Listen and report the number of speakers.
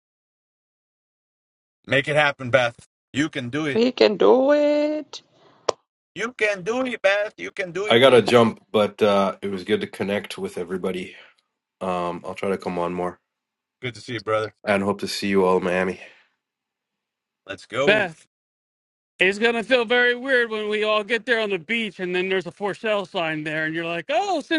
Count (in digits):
4